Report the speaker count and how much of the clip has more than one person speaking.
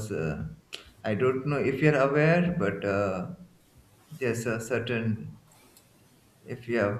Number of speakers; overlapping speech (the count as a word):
one, no overlap